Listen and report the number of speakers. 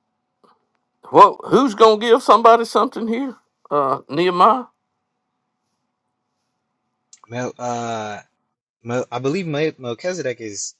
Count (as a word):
two